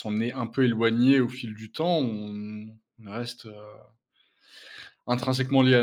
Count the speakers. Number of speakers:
one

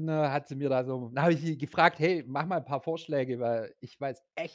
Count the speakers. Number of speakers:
one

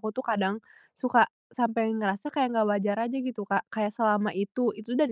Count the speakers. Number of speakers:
one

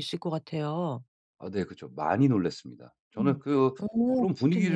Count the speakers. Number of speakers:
two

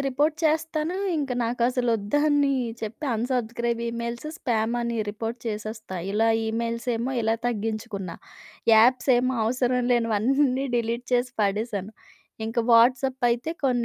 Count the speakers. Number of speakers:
one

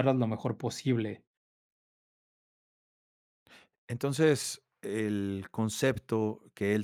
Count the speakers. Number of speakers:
two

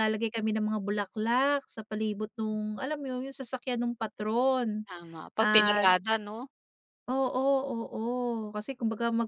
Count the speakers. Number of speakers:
two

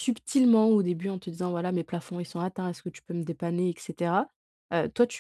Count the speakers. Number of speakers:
one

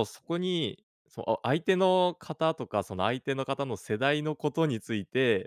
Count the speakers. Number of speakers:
one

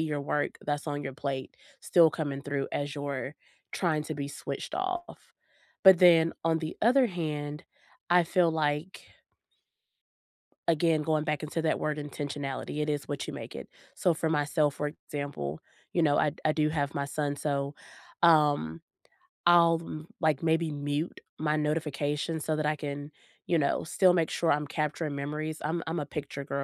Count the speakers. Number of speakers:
one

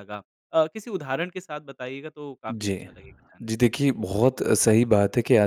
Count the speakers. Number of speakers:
two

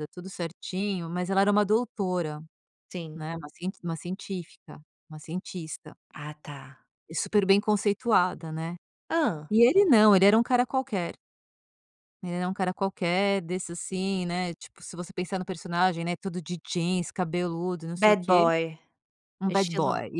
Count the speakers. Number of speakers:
two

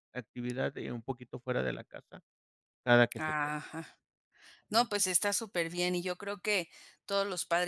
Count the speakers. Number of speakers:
two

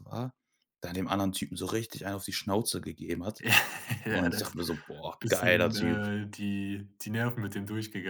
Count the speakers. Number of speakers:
two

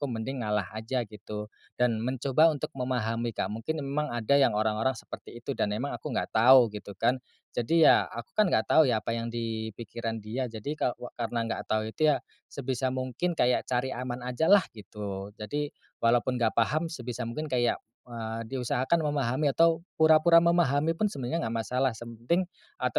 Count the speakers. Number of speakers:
one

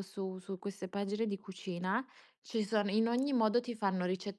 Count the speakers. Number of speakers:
one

